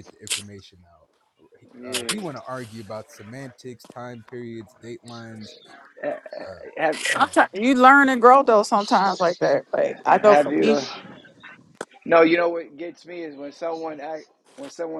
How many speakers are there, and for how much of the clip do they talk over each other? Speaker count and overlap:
3, about 9%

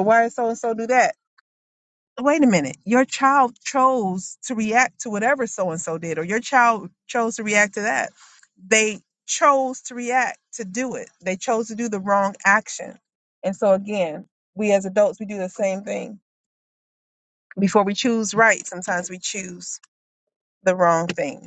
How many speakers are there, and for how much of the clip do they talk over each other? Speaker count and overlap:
1, no overlap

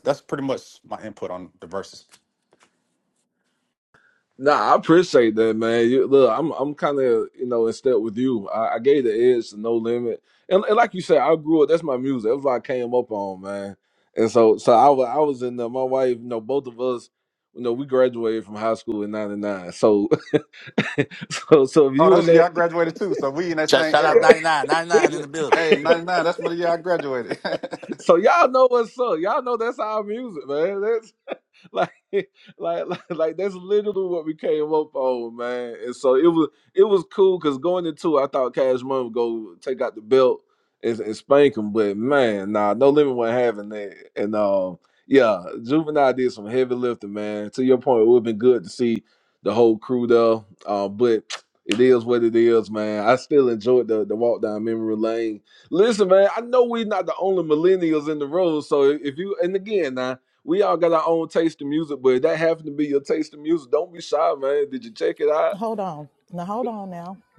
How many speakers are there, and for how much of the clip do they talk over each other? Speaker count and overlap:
4, about 3%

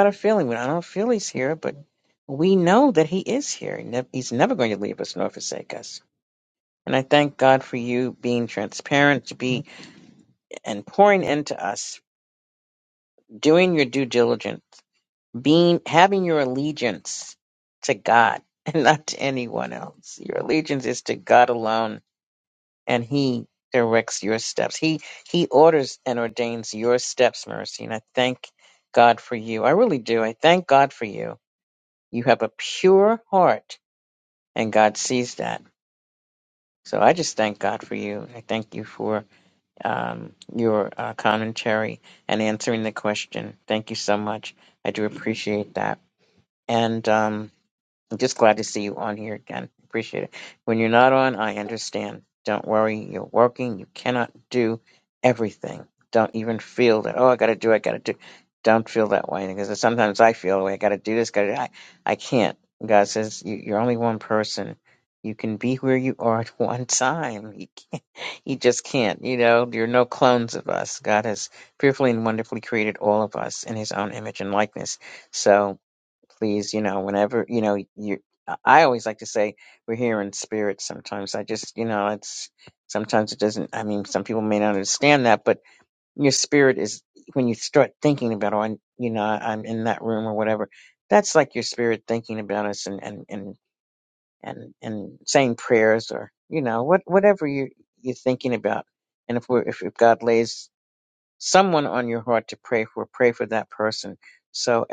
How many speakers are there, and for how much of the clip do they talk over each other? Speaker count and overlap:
1, no overlap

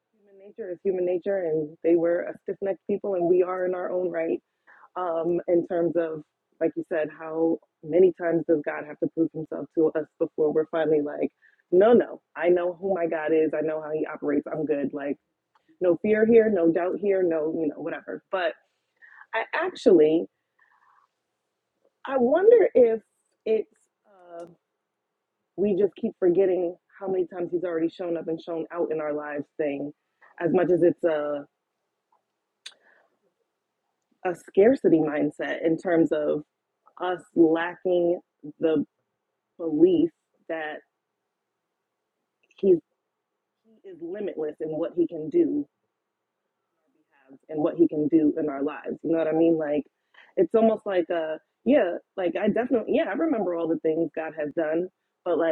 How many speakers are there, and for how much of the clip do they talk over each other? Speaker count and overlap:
1, no overlap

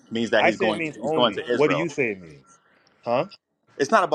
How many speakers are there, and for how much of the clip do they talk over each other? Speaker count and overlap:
2, about 38%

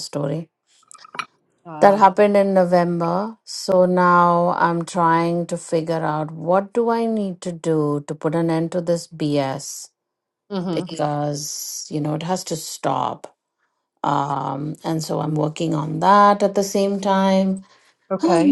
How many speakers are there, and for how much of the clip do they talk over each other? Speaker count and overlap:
2, about 4%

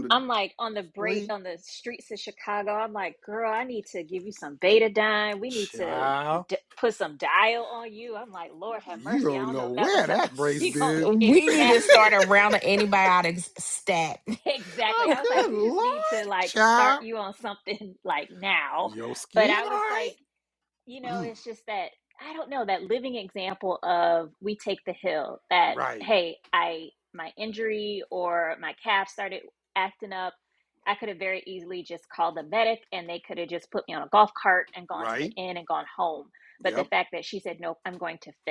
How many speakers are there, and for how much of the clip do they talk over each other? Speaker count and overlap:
3, about 19%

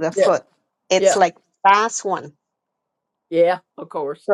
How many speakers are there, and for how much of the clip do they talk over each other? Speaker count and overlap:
2, about 9%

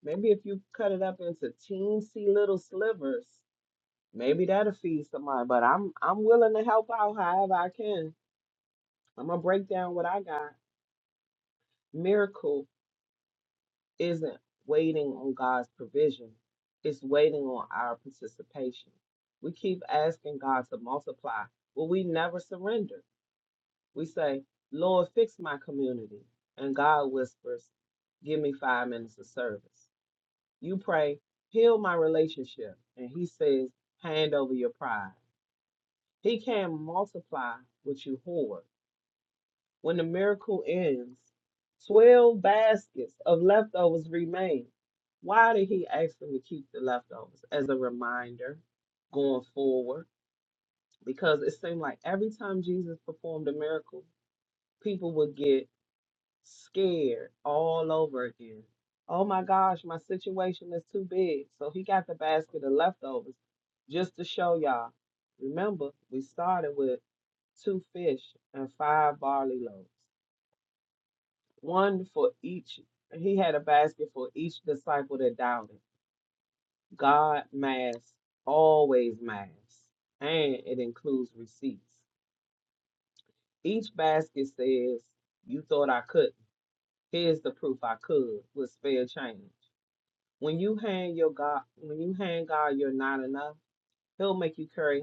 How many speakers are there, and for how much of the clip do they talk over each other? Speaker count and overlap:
1, no overlap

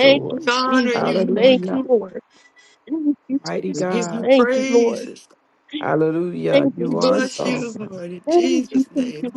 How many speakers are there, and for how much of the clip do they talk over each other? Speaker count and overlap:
3, about 58%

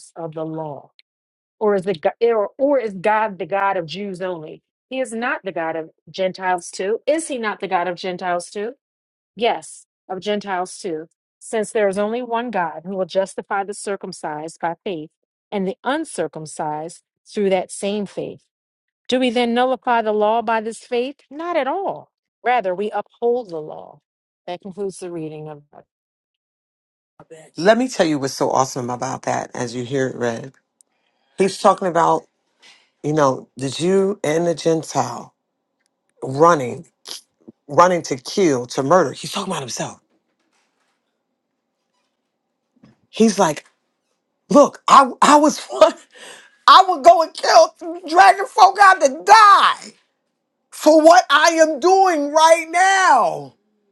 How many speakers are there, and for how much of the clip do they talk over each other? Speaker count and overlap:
2, no overlap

